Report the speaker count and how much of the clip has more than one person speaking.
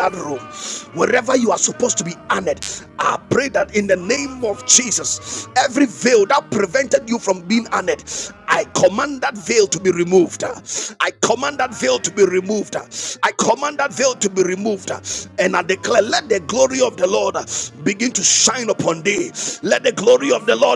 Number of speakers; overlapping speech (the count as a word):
one, no overlap